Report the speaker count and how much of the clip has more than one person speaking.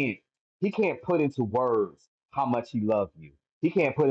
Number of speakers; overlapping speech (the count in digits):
1, no overlap